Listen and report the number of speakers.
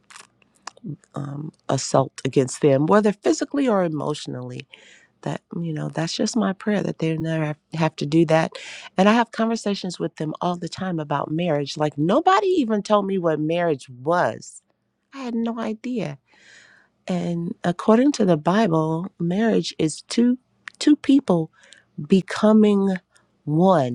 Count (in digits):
1